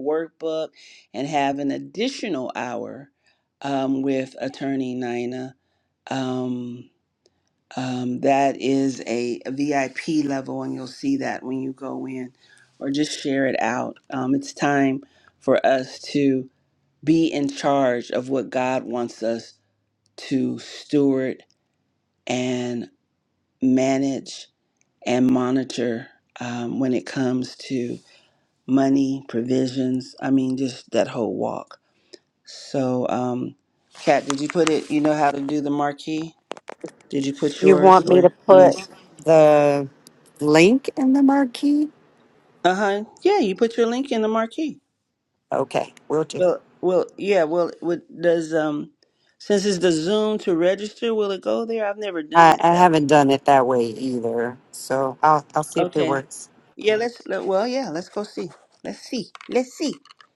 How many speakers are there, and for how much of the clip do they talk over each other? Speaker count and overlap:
2, about 4%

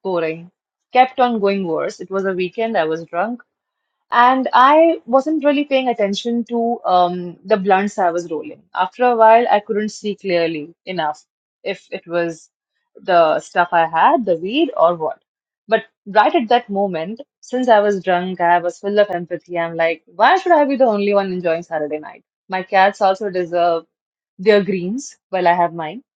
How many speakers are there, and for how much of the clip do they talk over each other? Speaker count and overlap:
1, no overlap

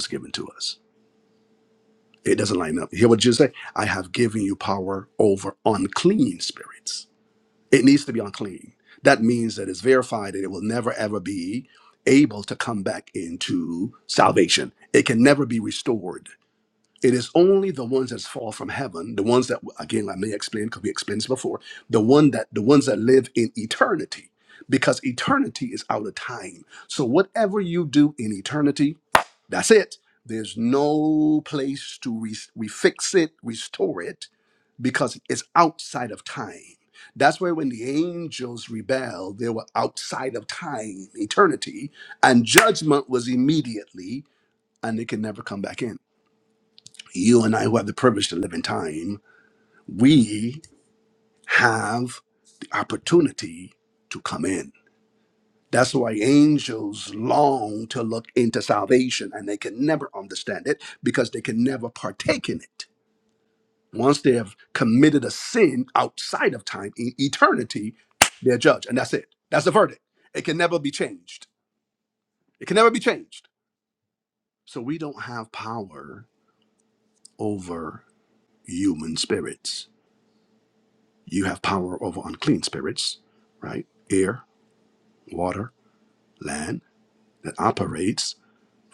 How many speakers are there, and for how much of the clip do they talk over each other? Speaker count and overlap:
1, no overlap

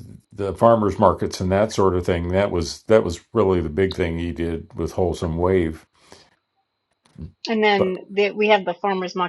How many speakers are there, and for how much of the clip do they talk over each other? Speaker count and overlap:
2, about 2%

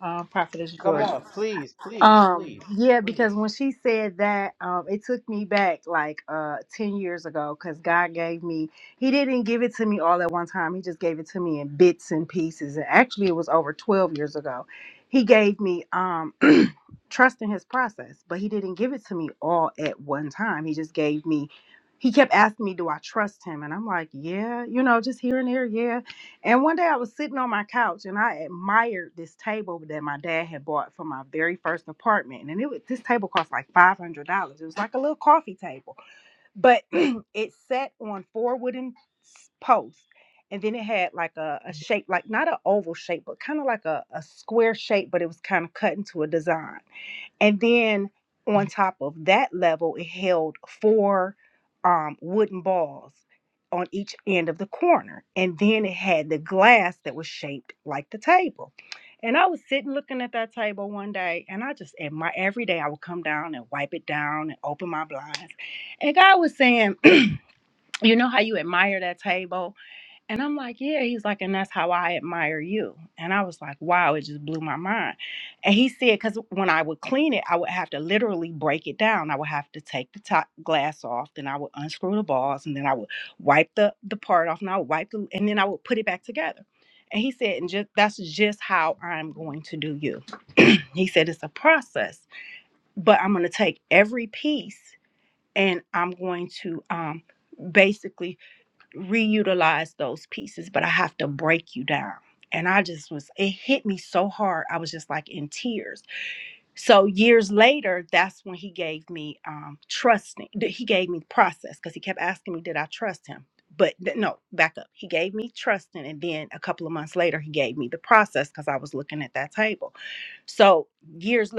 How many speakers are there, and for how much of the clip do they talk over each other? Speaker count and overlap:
2, about 1%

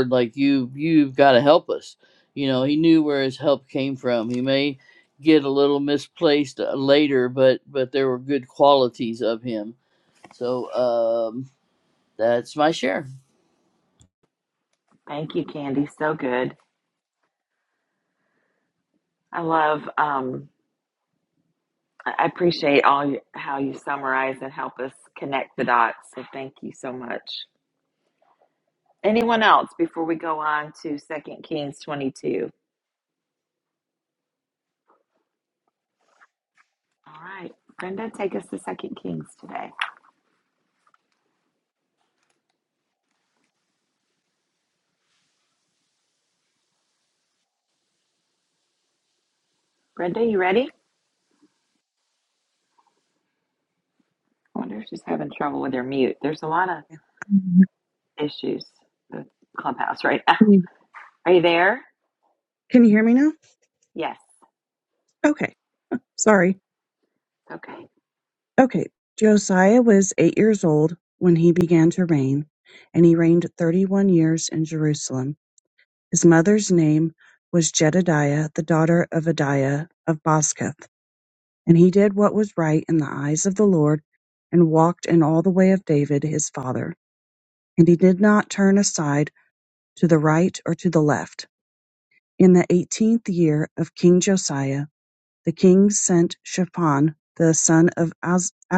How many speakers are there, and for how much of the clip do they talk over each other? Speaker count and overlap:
3, no overlap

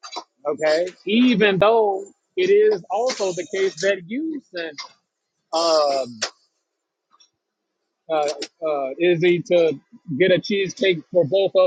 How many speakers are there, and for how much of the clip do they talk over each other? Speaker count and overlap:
1, no overlap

